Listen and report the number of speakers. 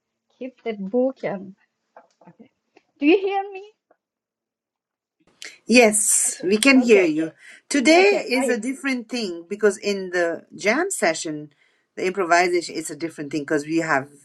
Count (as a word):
two